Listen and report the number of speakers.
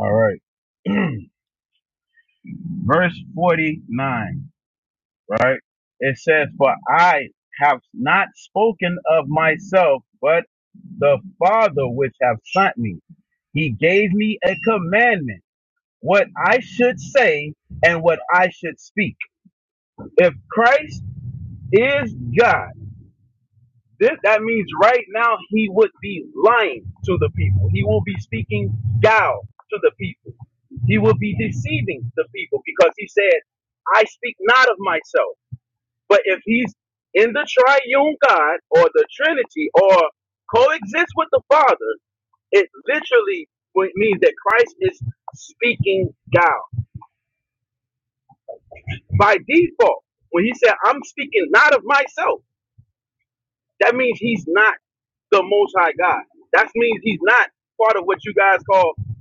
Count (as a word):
one